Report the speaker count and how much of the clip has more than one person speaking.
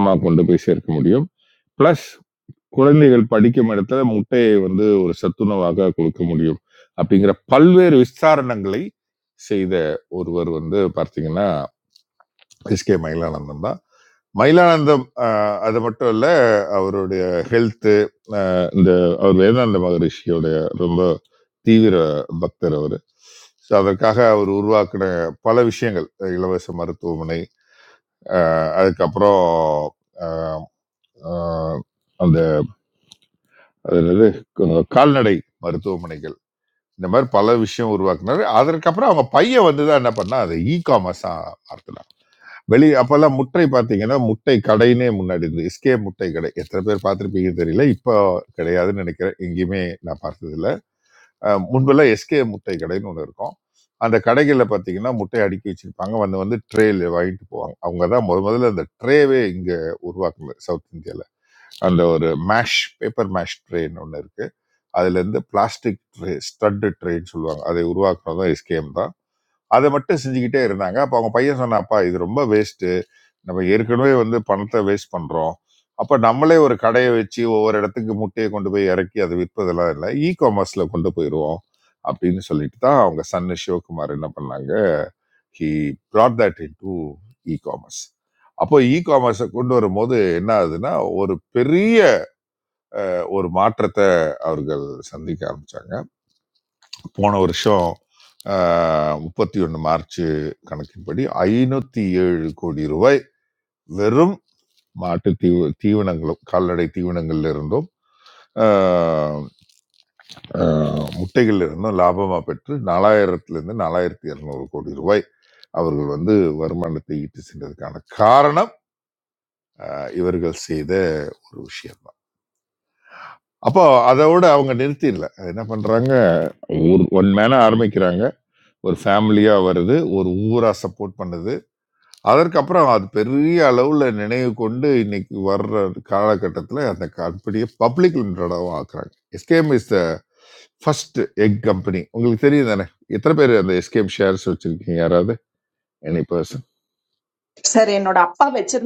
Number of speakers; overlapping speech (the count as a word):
two, no overlap